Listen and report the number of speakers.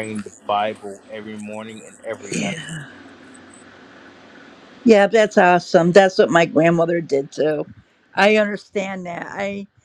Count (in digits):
2